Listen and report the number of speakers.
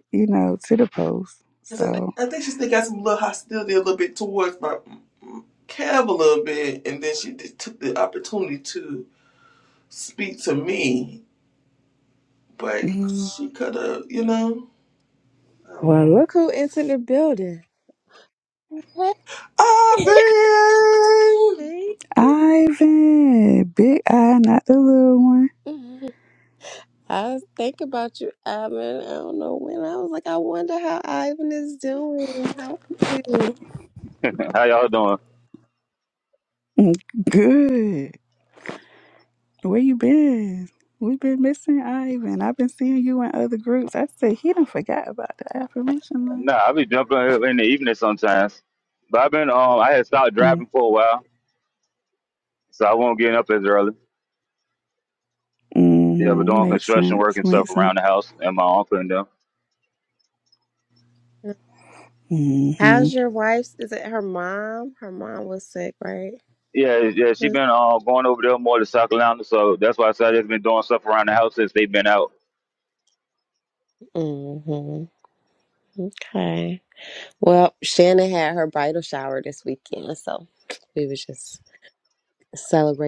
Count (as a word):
four